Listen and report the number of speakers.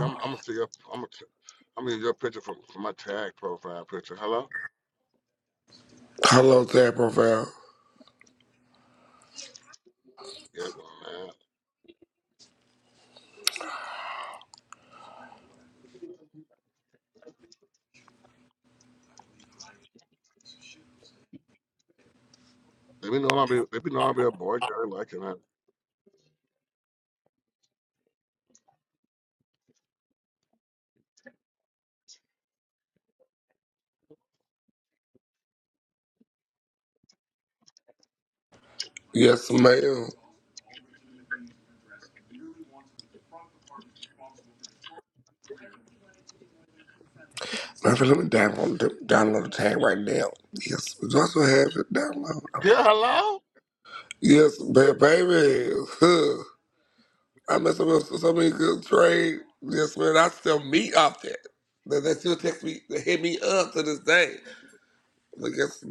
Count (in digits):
2